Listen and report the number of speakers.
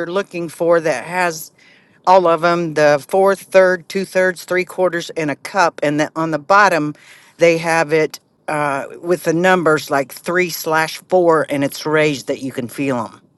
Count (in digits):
1